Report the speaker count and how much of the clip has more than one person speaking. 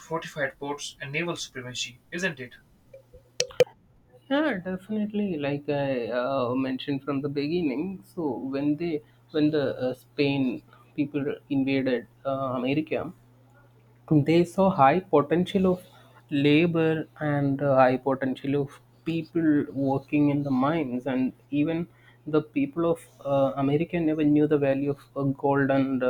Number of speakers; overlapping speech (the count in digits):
2, no overlap